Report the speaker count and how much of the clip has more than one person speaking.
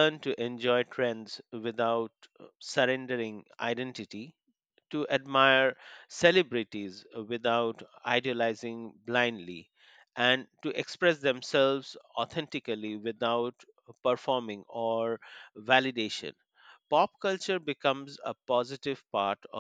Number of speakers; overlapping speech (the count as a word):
one, no overlap